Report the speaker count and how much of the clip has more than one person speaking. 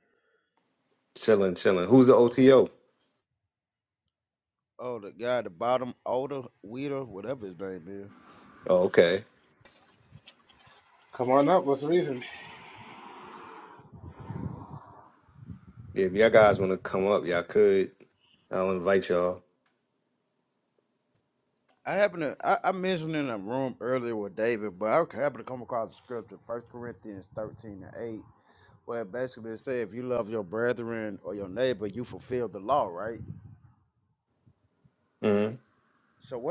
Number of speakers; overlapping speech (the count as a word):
three, no overlap